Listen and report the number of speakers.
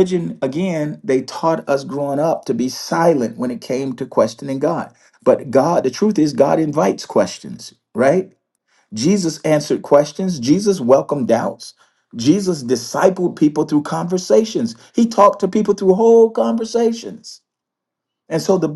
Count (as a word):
one